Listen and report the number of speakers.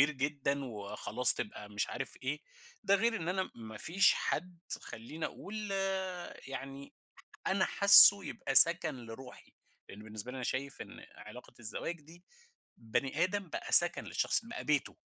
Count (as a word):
one